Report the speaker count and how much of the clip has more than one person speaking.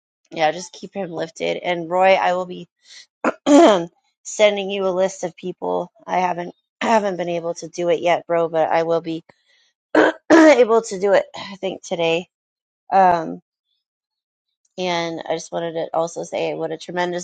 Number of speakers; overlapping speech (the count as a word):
one, no overlap